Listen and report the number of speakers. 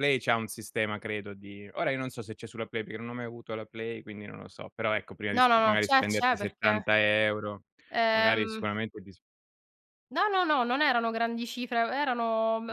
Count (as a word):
two